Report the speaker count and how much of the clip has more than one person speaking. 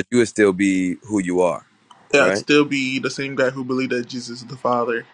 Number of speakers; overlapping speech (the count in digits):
2, about 5%